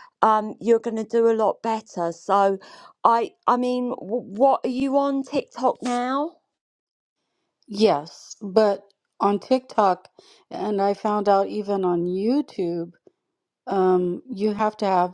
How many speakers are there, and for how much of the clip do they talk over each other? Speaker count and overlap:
two, no overlap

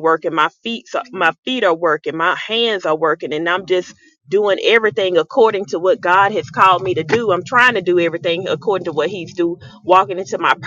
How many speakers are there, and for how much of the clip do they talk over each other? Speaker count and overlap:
one, no overlap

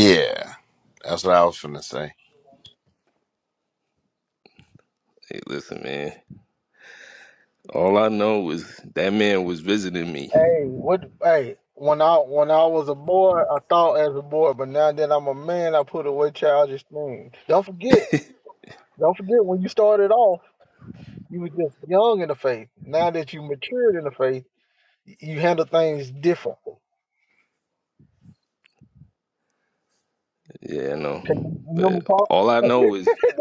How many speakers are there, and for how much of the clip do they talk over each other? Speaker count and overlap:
three, about 3%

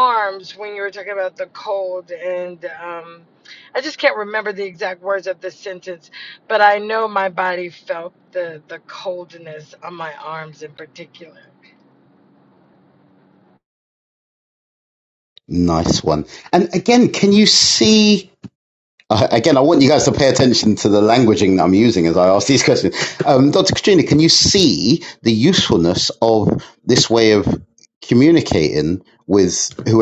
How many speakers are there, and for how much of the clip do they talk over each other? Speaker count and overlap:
two, no overlap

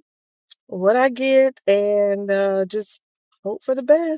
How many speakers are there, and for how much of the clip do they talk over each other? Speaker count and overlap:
one, no overlap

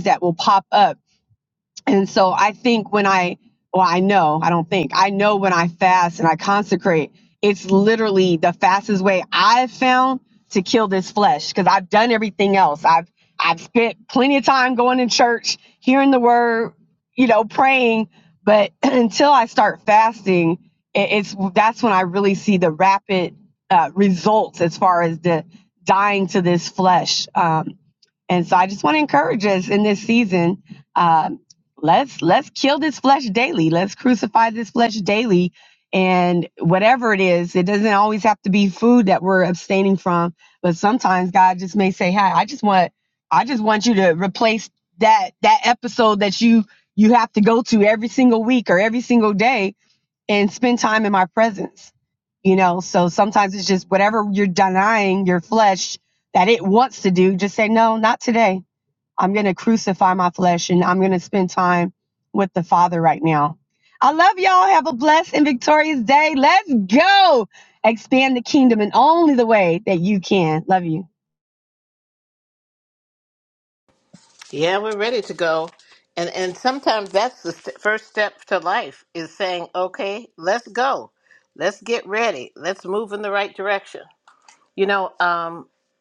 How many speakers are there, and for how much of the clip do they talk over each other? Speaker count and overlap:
two, no overlap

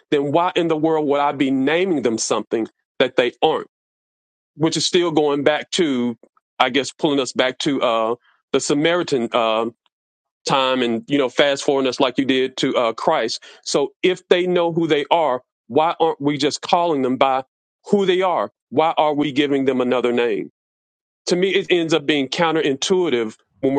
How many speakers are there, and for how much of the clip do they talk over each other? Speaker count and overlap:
one, no overlap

